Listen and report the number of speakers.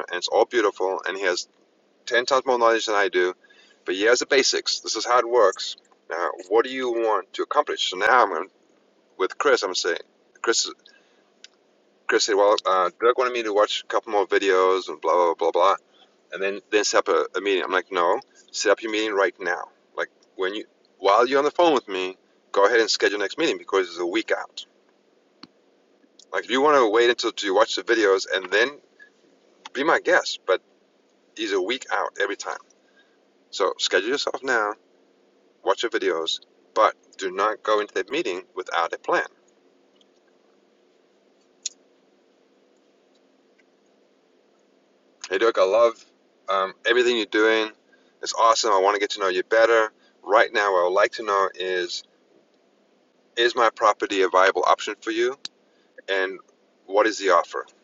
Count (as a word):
one